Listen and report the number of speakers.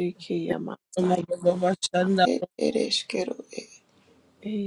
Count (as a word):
three